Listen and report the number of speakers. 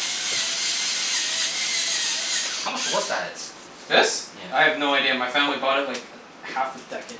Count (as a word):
two